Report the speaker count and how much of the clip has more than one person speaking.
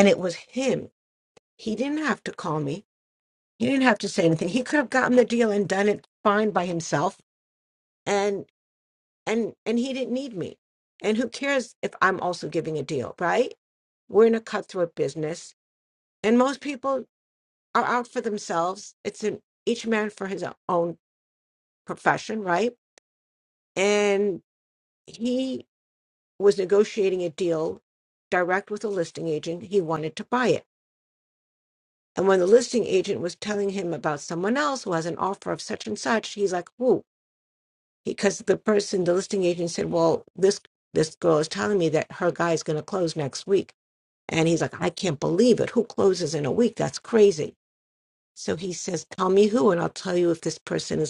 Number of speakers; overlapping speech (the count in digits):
1, no overlap